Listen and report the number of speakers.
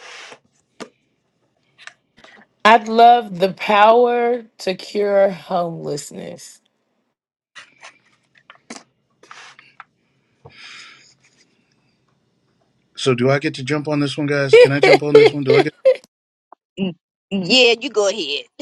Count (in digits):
3